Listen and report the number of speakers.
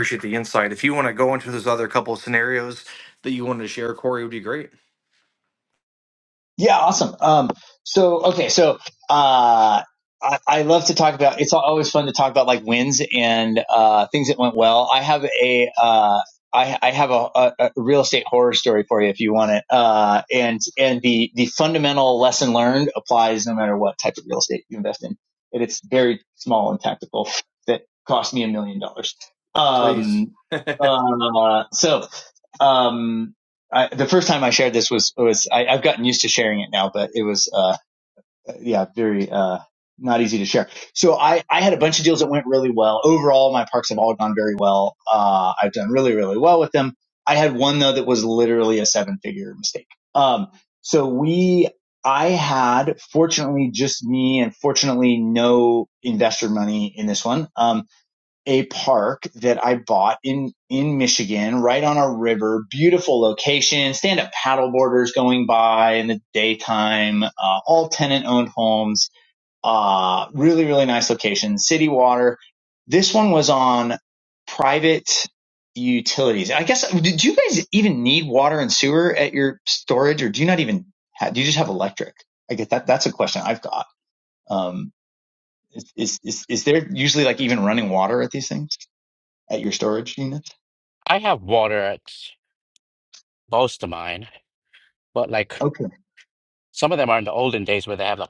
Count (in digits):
3